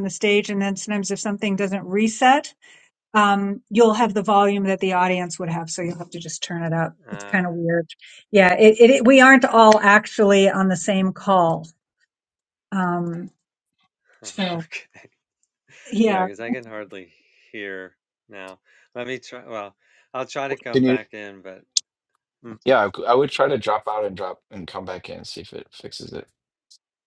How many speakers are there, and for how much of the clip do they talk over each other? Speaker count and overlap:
3, about 4%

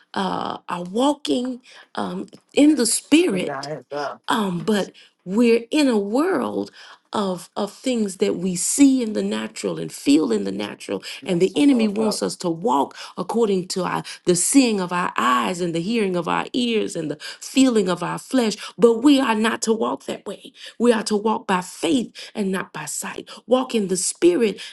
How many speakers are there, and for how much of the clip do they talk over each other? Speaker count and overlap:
2, about 5%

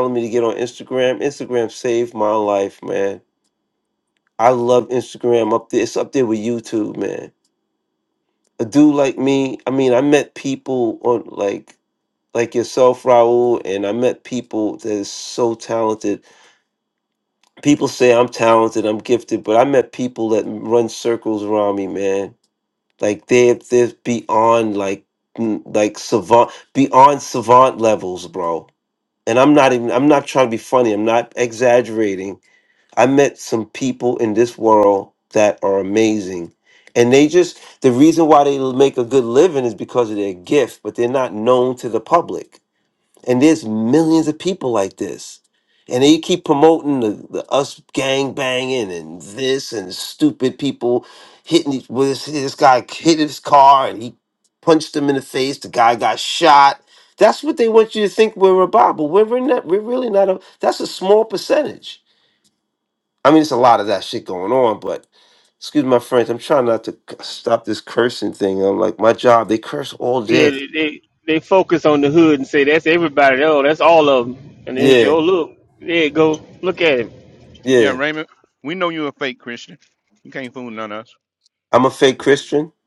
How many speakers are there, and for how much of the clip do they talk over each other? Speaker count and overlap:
3, about 1%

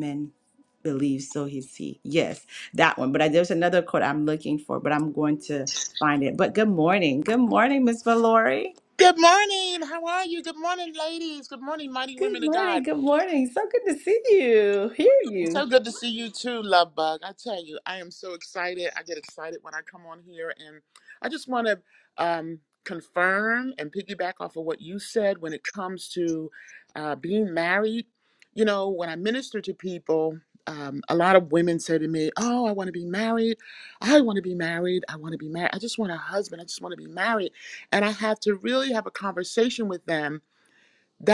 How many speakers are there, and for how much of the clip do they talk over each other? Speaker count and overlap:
2, about 2%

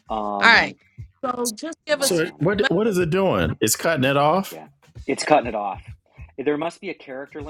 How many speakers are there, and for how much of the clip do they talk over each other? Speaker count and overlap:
3, about 13%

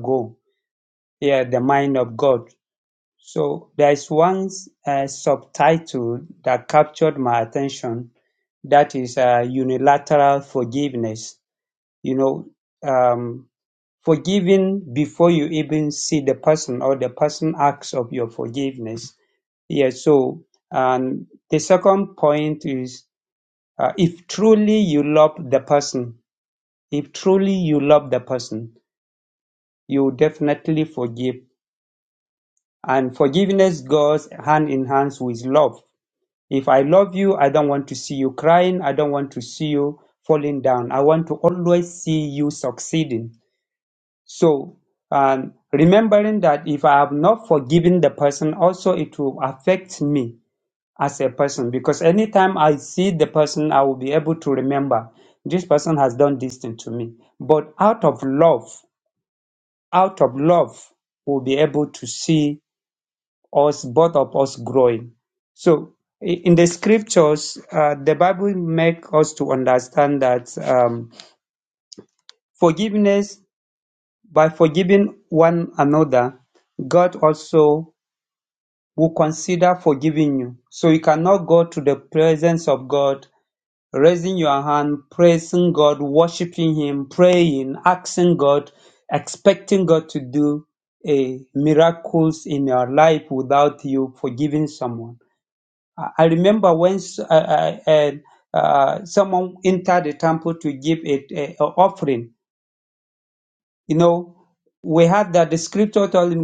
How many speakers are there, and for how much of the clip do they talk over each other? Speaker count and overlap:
1, no overlap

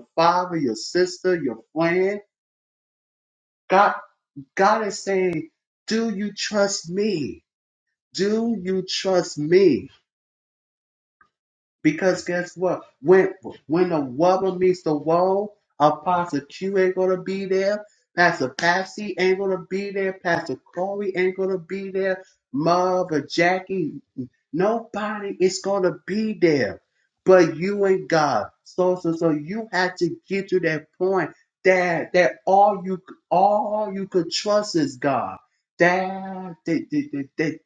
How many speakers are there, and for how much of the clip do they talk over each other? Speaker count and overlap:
1, no overlap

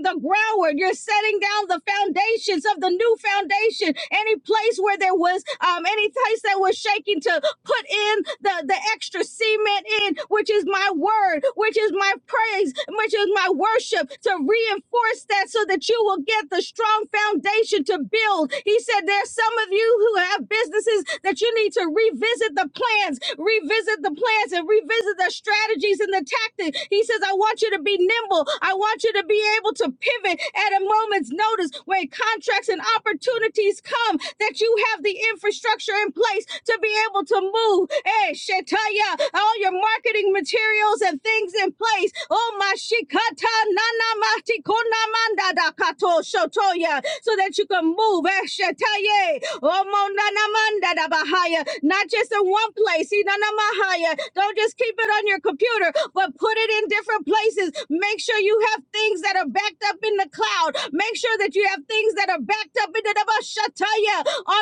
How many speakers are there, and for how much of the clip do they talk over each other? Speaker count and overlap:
1, no overlap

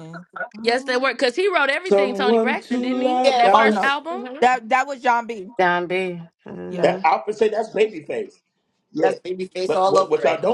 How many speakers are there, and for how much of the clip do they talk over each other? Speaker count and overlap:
5, about 36%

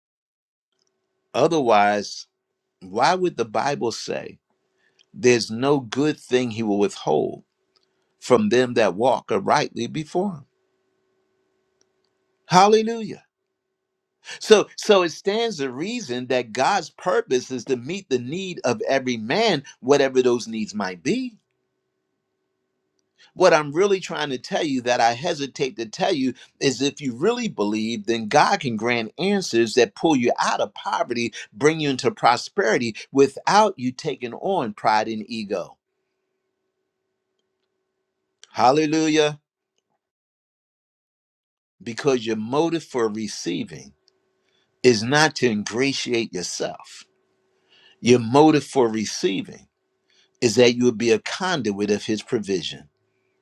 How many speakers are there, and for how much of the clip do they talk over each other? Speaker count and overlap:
1, no overlap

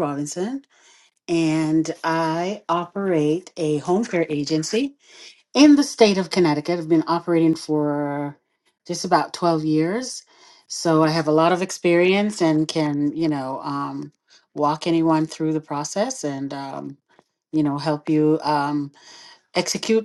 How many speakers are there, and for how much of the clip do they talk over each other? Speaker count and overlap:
1, no overlap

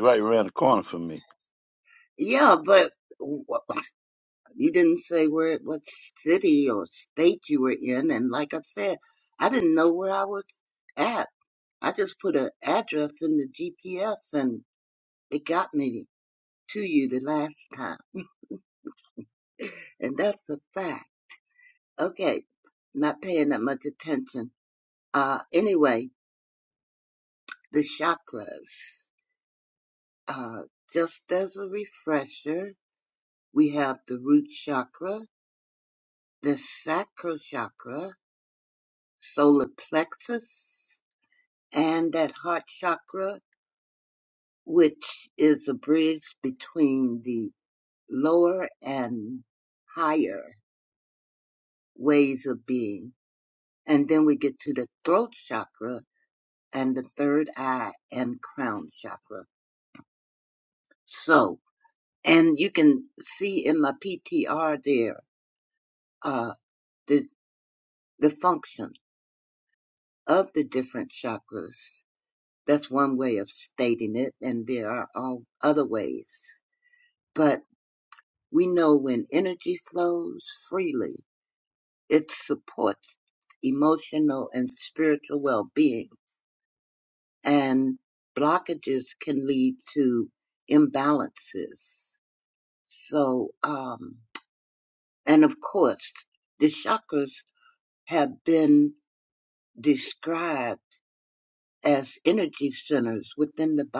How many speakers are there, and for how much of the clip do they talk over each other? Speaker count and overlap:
2, no overlap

